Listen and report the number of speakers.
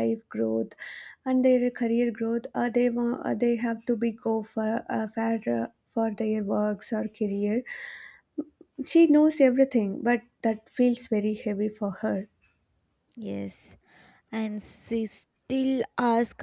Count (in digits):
2